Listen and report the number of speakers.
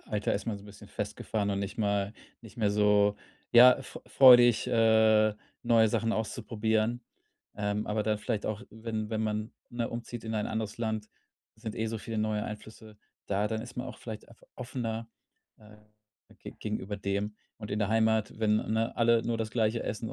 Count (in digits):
1